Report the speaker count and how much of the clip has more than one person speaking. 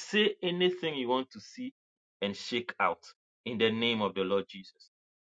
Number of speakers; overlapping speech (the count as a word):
one, no overlap